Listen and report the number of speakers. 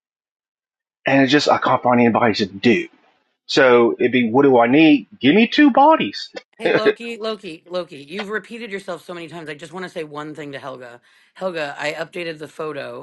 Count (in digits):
2